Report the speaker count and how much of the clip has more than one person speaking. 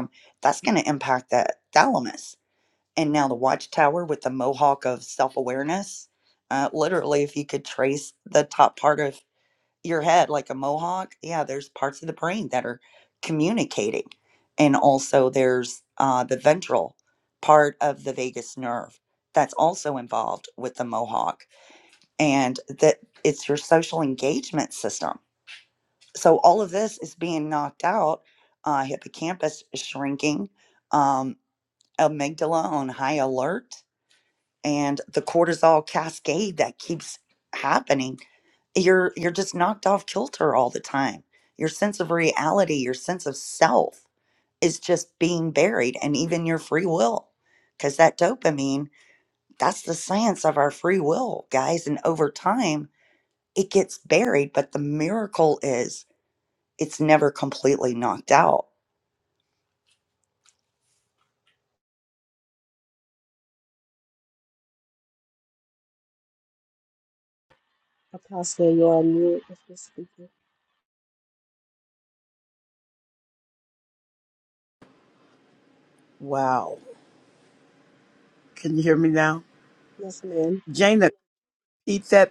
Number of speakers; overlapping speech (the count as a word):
three, no overlap